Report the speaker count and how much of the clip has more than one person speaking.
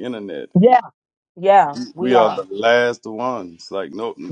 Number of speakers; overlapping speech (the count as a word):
two, about 14%